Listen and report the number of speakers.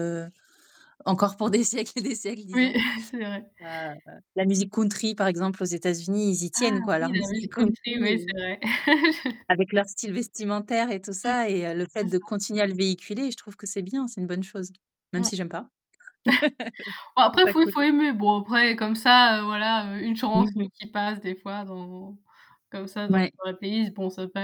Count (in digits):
2